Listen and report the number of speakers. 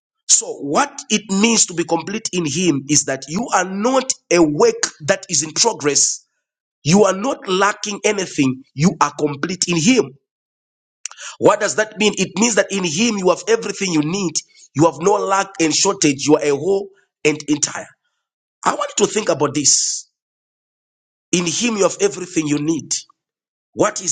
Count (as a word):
one